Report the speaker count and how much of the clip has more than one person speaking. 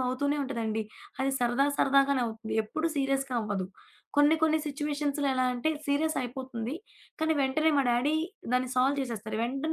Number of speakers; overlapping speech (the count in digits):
1, no overlap